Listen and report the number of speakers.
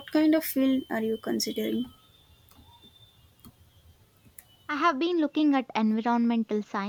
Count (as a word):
two